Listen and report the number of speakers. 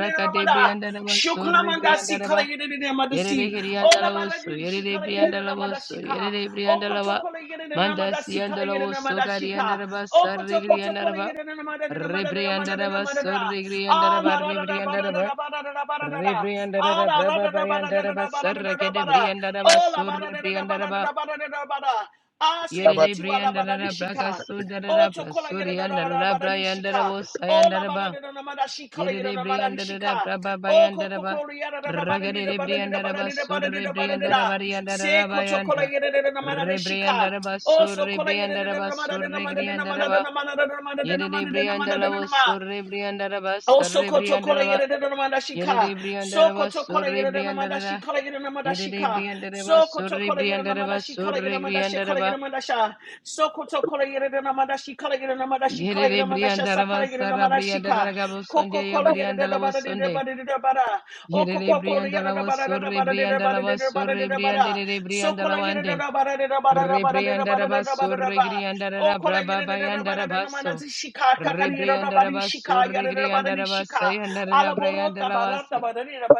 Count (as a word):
two